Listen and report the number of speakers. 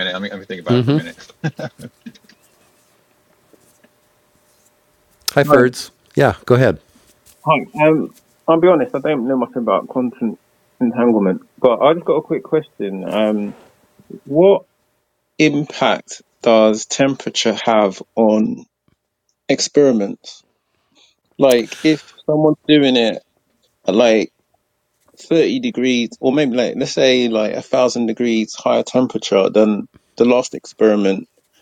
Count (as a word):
three